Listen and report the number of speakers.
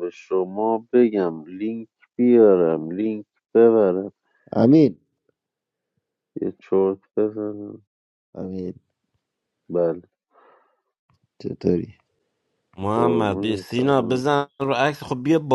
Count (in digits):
3